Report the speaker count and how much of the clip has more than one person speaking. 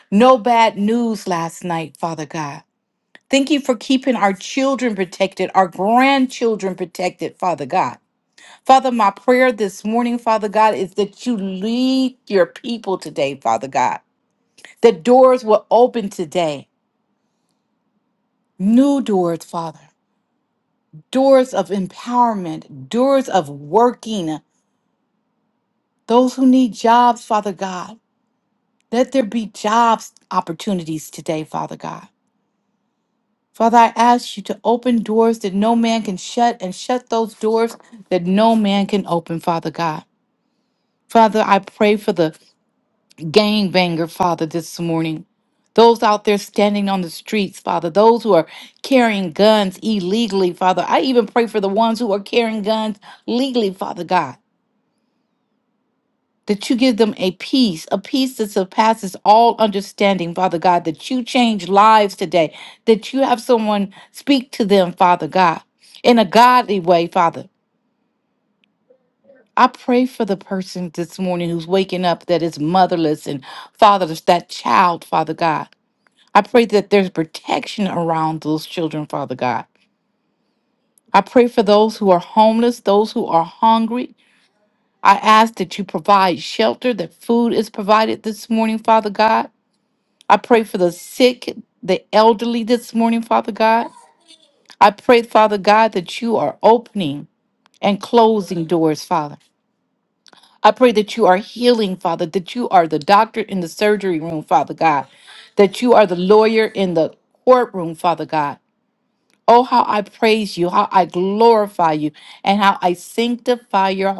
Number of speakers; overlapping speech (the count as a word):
one, no overlap